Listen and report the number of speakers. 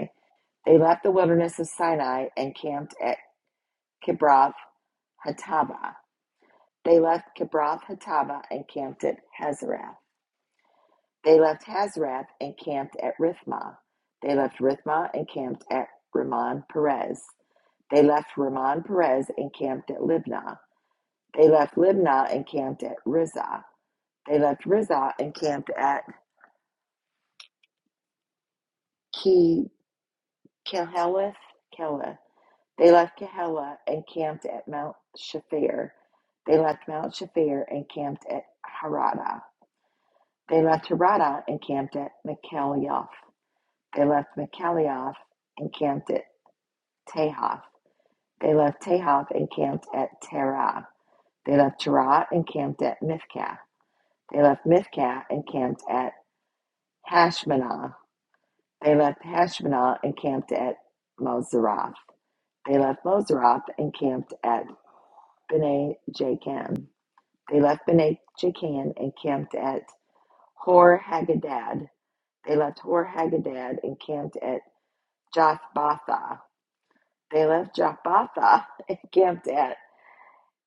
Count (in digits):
1